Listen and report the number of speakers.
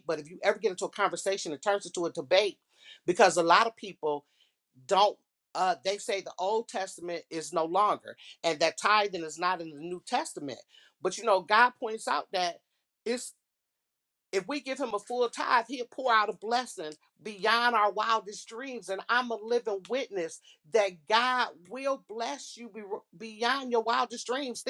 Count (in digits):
1